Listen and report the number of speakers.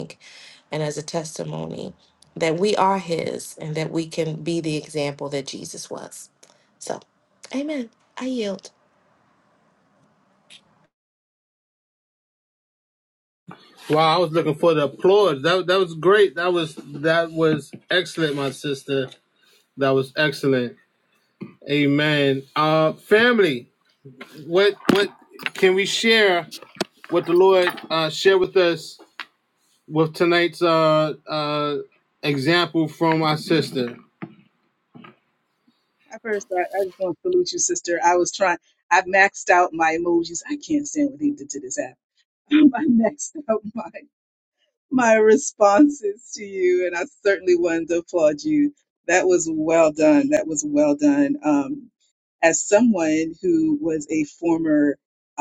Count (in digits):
3